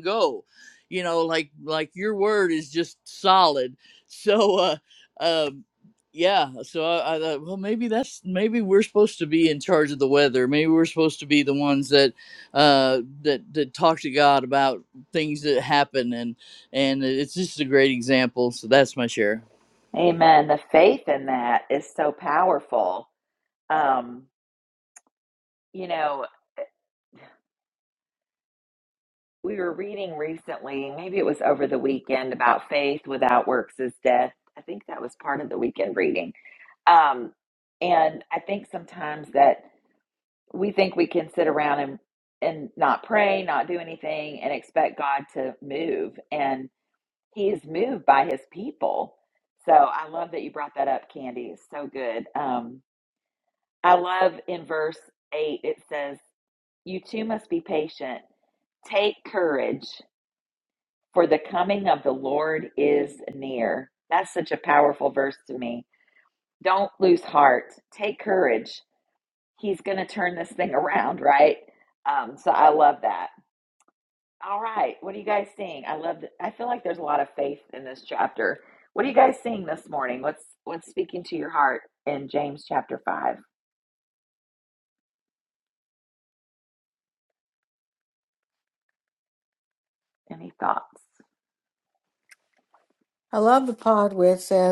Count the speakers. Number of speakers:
3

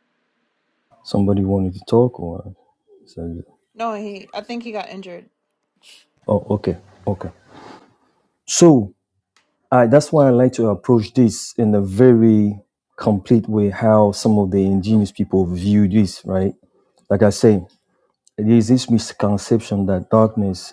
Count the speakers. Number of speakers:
2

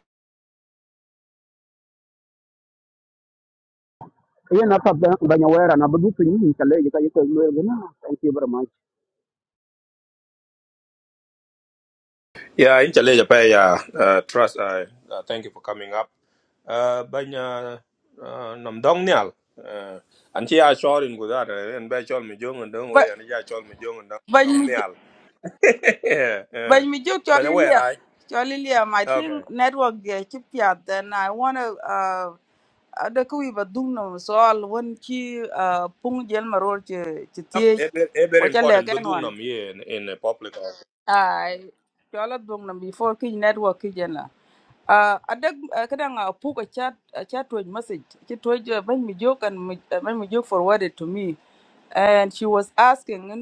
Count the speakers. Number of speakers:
3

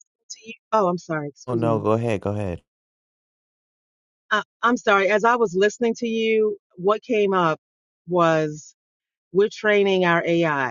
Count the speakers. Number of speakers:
2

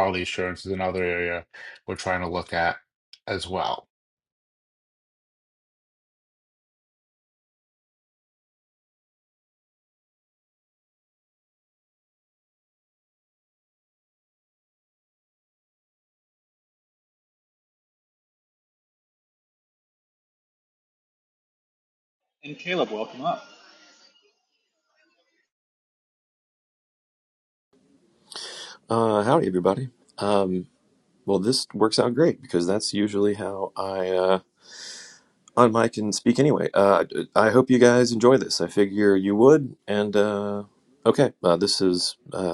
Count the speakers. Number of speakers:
3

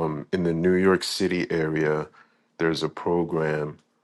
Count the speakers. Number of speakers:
1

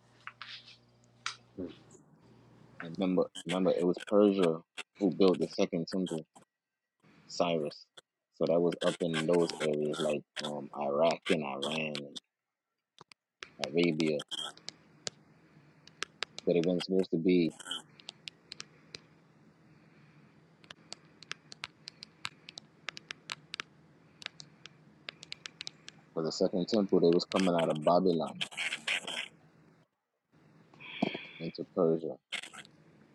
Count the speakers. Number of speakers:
1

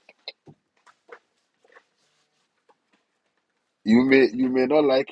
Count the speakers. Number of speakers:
1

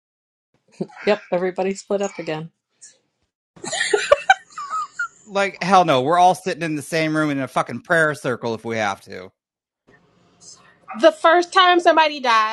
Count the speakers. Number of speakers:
3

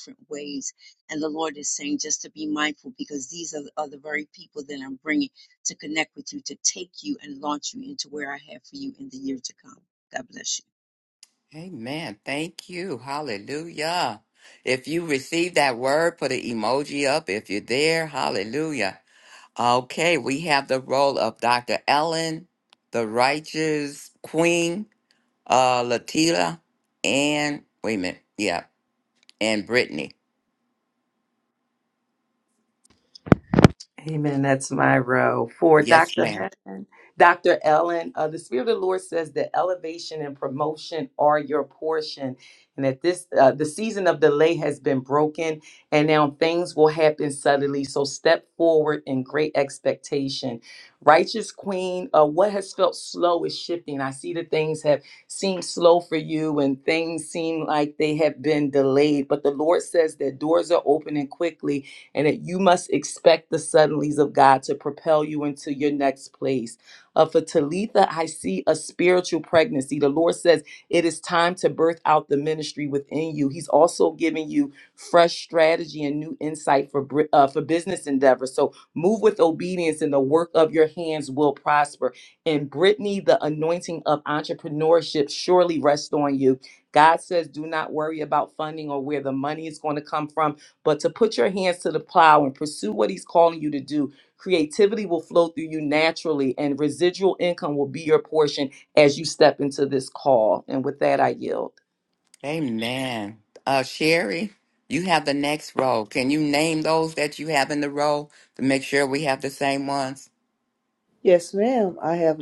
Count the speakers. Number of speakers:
4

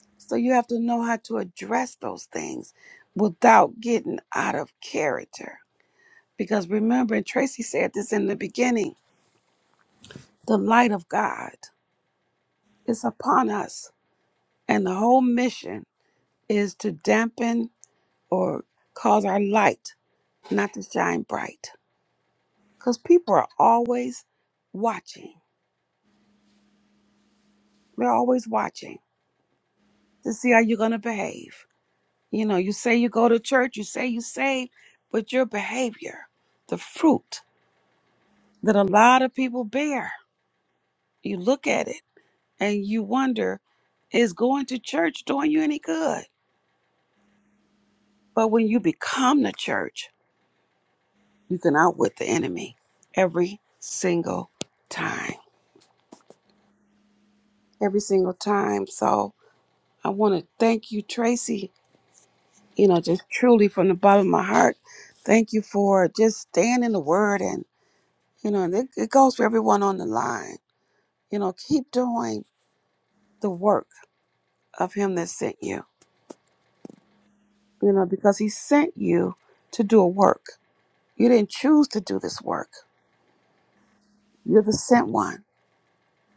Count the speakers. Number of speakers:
1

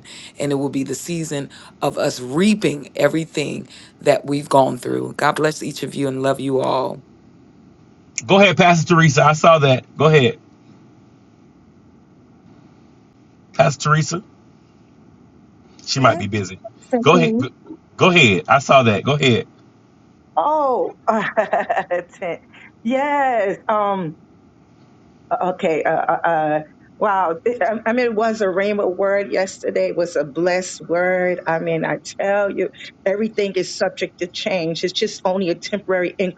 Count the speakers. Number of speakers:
3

